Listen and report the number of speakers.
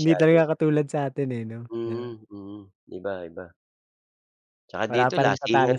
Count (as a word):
two